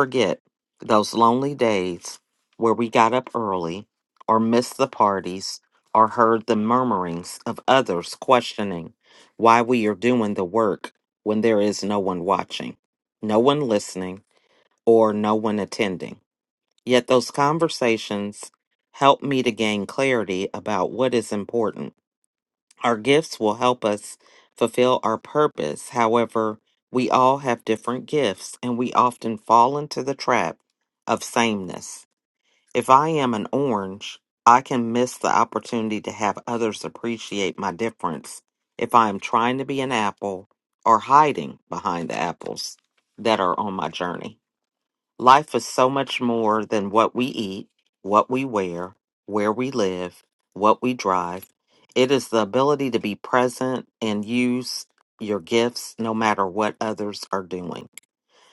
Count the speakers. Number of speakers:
1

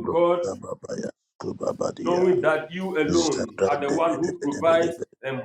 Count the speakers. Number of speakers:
2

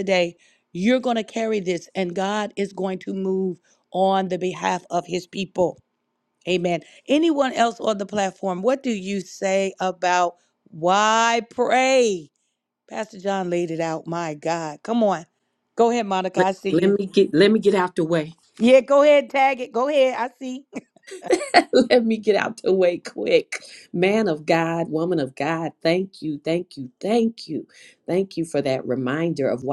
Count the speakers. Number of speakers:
2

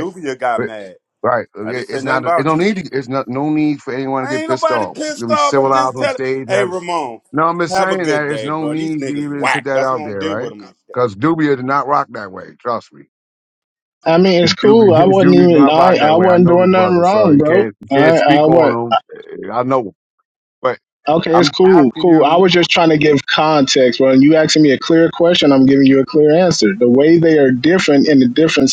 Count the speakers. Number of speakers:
3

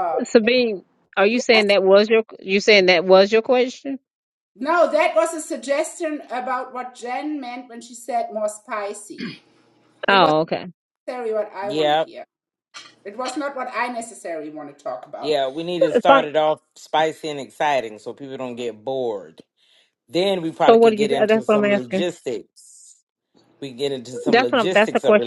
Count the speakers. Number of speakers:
3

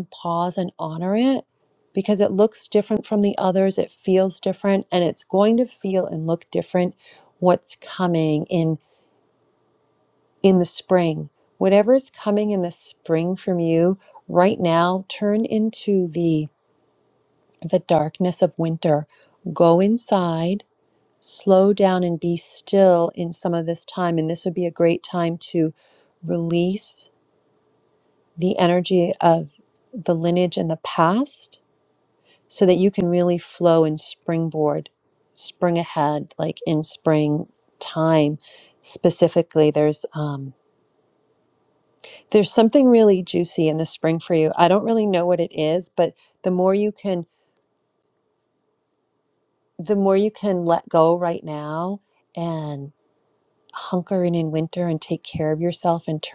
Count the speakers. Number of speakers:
1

